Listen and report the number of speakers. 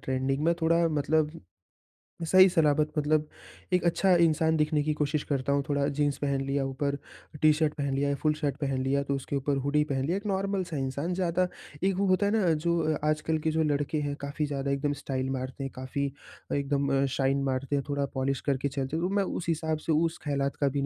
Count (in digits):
1